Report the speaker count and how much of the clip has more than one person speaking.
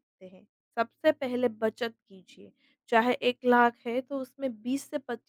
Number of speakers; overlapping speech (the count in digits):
1, no overlap